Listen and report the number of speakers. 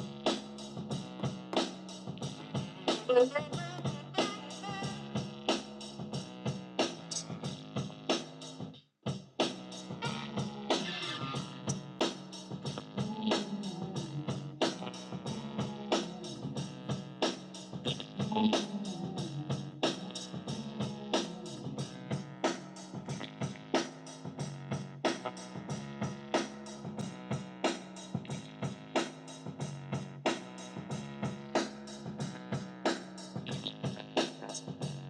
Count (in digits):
0